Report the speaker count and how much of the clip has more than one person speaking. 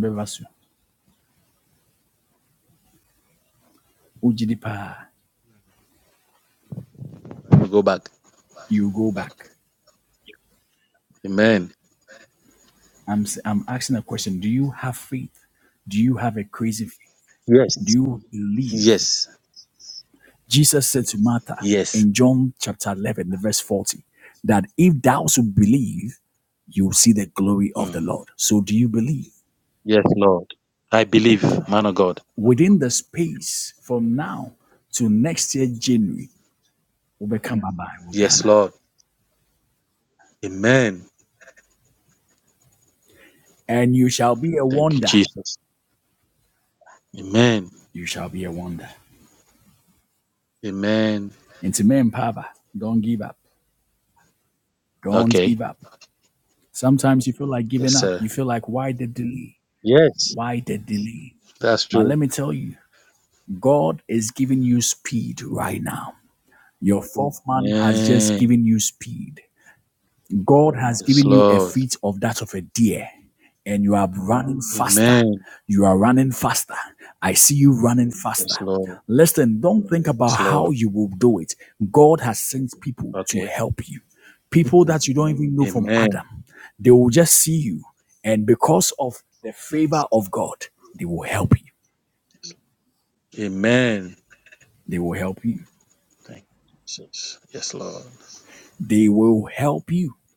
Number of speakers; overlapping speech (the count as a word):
two, about 7%